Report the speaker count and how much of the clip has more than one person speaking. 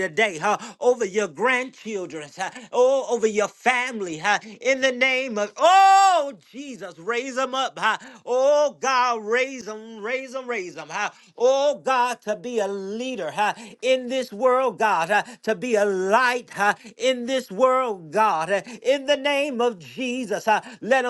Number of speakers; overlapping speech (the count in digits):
1, no overlap